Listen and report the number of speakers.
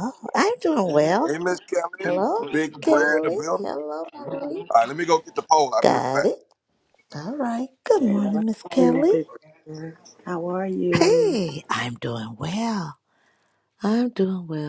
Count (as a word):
three